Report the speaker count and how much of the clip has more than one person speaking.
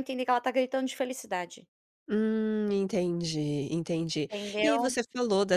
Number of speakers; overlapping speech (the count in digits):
2, about 11%